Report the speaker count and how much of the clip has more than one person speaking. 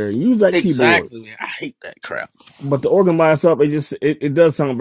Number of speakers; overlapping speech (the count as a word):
two, about 12%